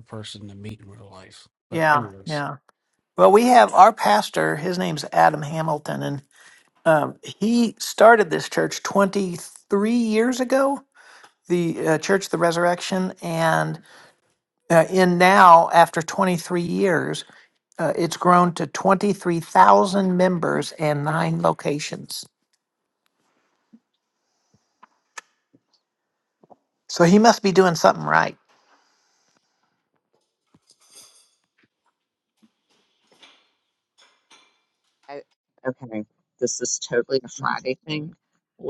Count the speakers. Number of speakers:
3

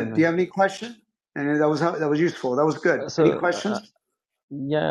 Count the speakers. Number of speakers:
2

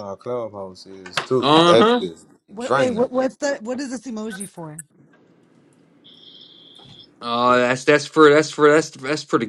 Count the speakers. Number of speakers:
3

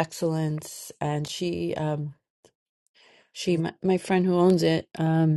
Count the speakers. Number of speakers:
1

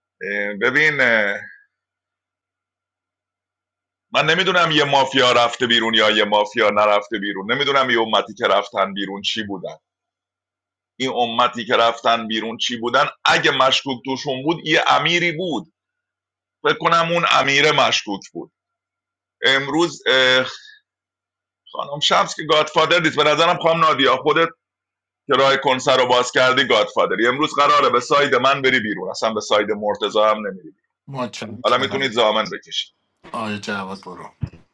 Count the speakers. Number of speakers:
2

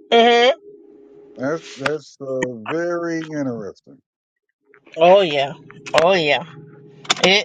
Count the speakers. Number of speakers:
2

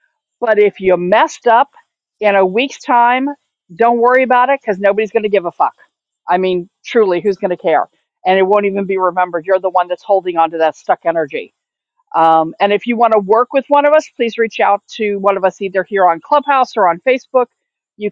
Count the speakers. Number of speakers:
1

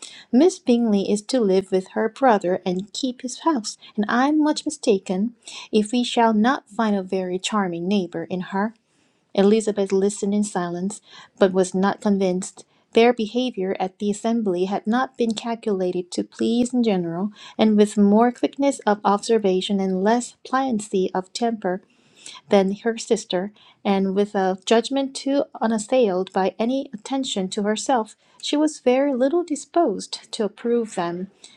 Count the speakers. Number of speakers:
1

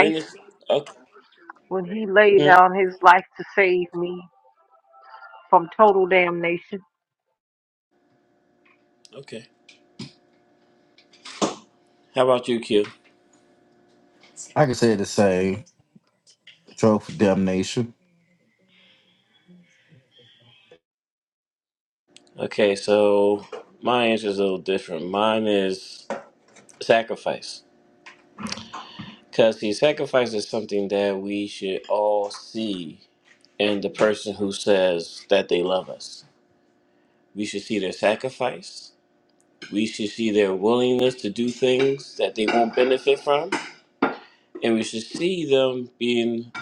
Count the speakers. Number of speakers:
3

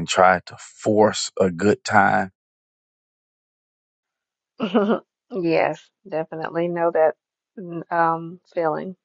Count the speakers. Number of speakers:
2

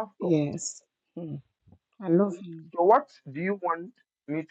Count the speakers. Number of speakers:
2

